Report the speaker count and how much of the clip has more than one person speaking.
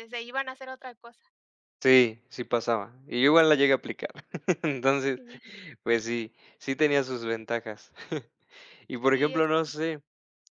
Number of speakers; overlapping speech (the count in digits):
2, about 5%